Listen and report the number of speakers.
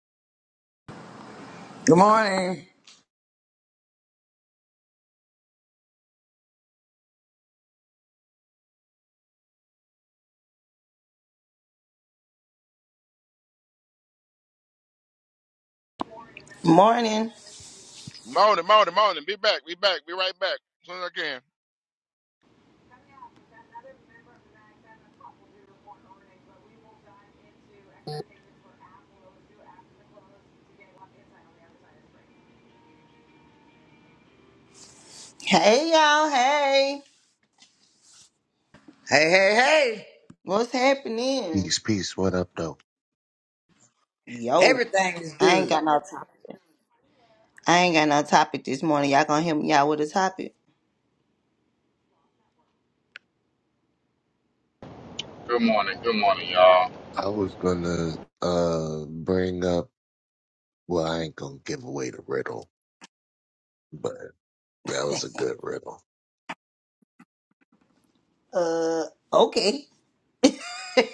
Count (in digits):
5